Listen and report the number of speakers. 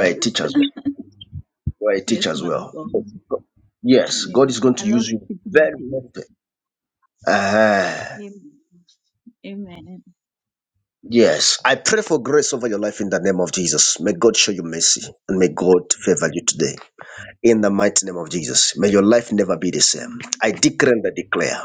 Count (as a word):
two